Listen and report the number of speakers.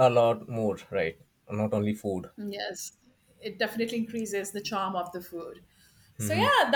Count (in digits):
2